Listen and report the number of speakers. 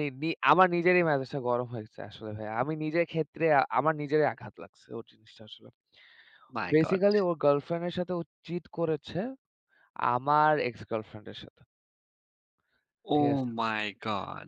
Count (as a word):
two